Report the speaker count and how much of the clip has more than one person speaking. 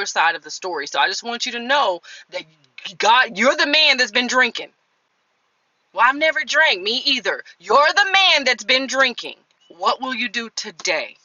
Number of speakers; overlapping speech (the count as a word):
one, no overlap